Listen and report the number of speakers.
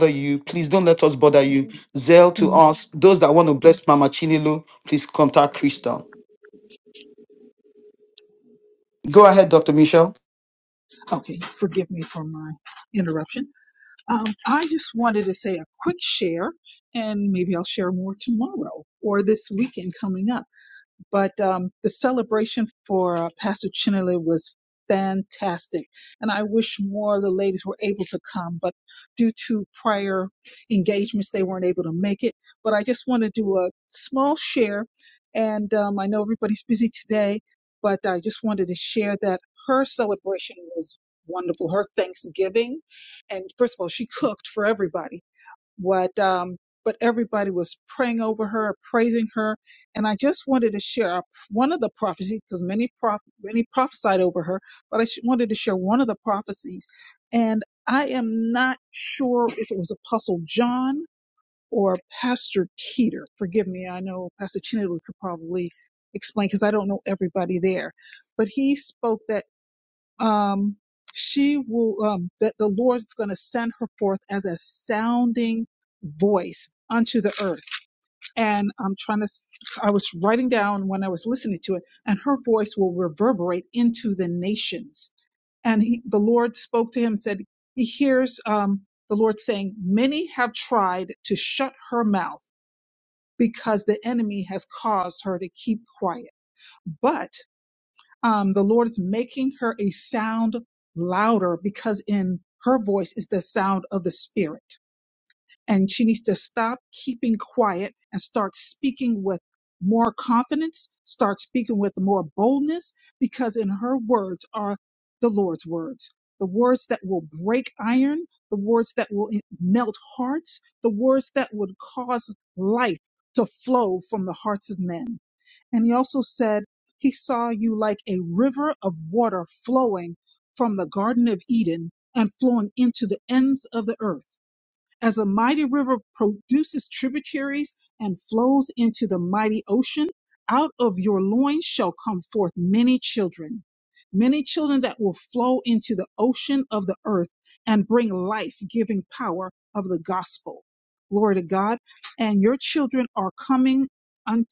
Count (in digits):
2